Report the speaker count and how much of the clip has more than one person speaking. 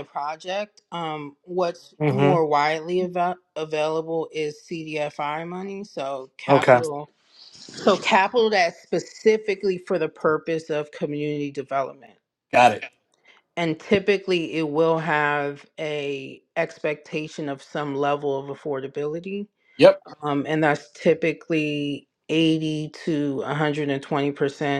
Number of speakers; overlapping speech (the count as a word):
two, about 2%